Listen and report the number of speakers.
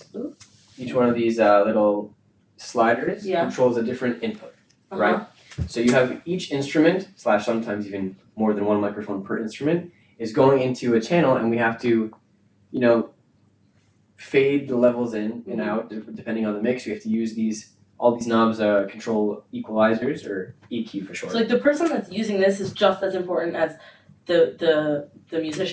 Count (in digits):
2